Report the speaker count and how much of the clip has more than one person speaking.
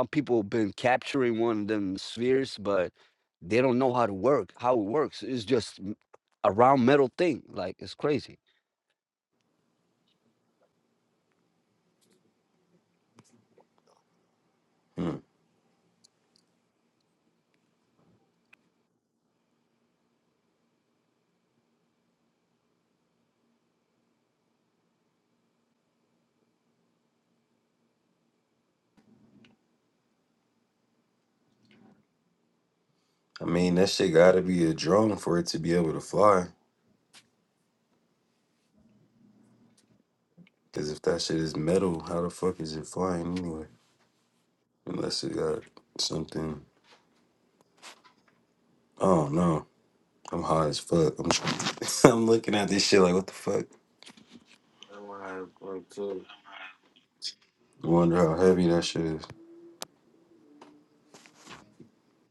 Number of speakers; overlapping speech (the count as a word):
three, no overlap